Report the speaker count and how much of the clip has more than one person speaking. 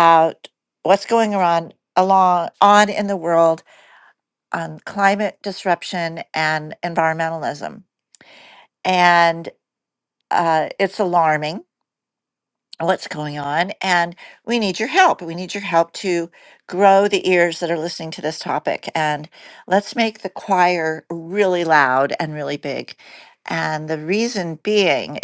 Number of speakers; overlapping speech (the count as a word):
one, no overlap